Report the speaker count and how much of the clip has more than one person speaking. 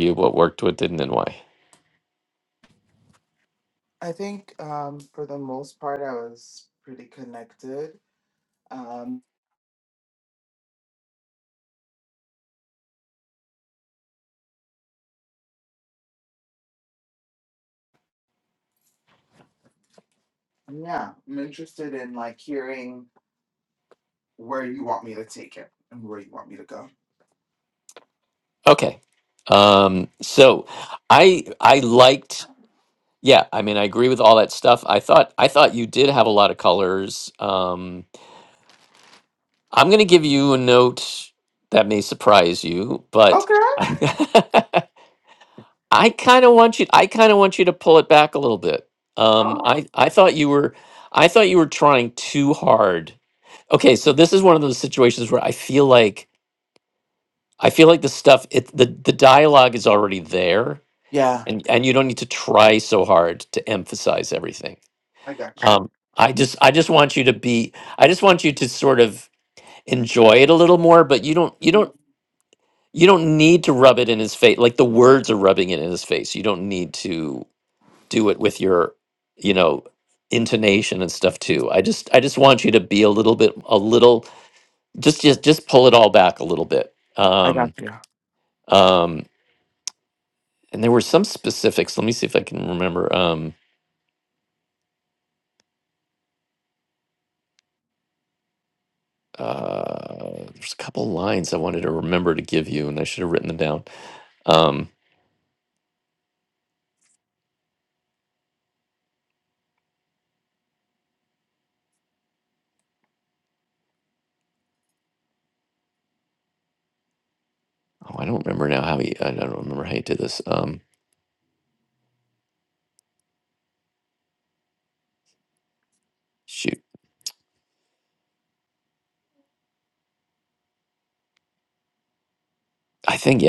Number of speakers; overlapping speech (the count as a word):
two, about 1%